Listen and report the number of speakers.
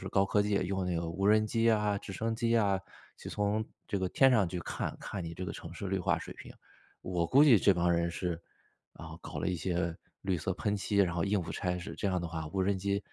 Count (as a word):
one